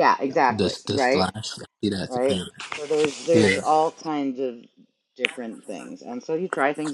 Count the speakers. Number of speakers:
two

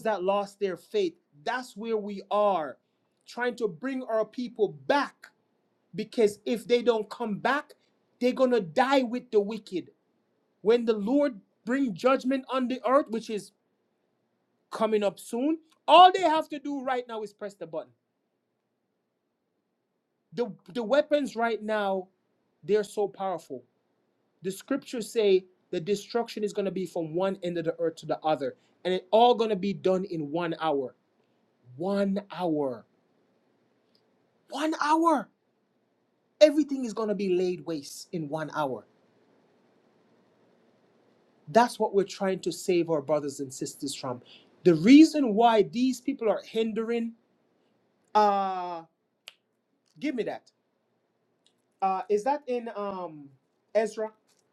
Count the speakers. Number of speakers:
one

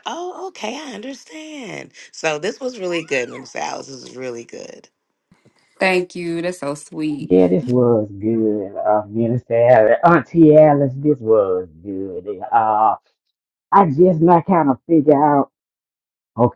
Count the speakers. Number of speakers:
three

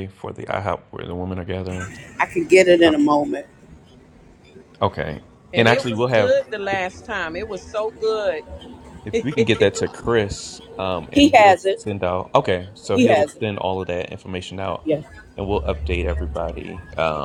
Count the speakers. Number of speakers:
three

